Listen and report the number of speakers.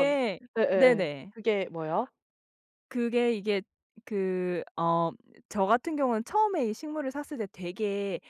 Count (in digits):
2